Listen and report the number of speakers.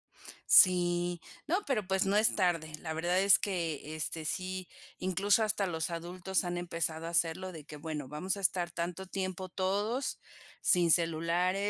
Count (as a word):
one